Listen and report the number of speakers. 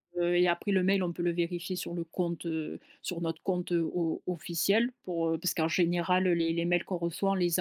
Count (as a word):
one